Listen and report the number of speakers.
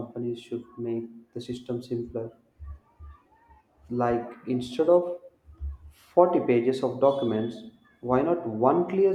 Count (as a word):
one